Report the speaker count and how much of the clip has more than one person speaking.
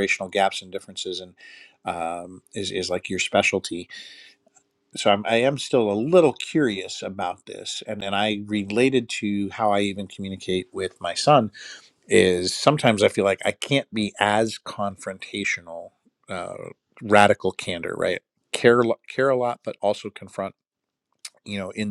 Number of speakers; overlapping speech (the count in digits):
1, no overlap